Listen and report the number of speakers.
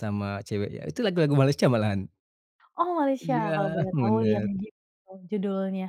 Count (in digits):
2